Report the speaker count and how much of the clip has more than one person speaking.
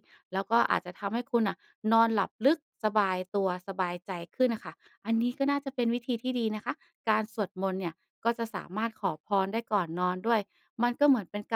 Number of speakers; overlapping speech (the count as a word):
one, no overlap